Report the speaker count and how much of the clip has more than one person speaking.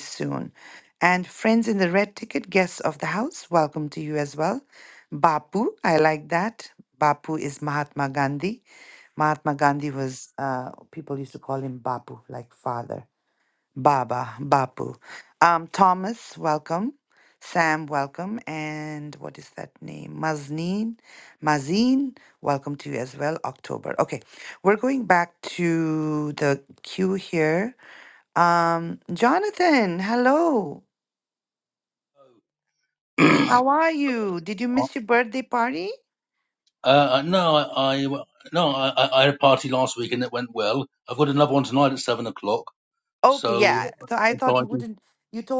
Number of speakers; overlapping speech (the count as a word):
two, about 2%